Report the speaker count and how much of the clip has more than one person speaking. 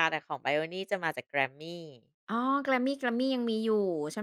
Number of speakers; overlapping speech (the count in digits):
2, no overlap